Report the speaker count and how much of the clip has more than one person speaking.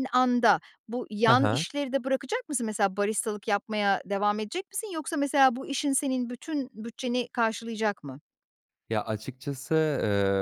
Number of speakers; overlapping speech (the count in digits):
2, about 4%